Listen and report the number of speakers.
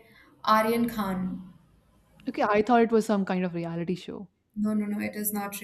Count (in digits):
2